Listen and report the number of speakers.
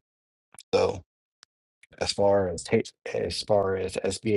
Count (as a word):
one